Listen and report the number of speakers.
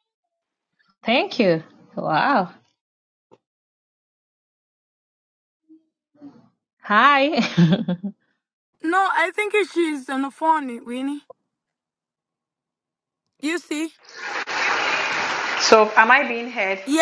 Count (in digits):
3